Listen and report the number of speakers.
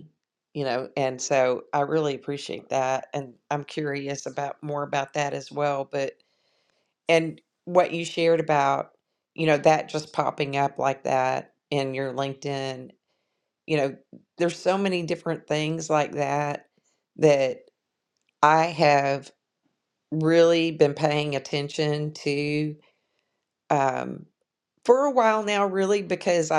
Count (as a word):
one